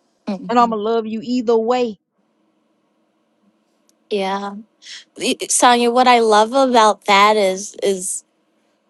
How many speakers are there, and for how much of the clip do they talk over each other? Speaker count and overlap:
2, about 3%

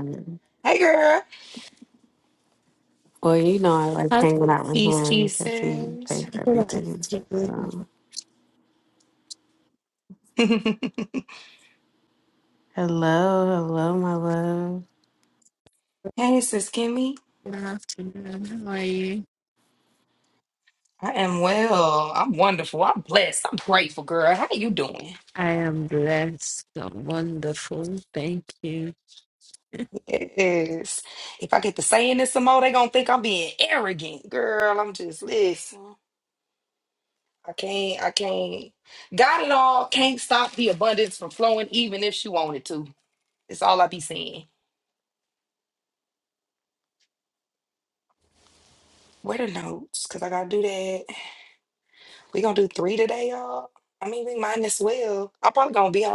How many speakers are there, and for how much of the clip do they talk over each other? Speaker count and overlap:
3, about 4%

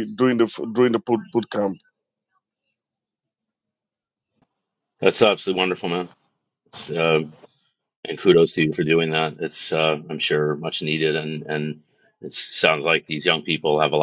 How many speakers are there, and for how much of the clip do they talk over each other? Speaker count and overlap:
2, no overlap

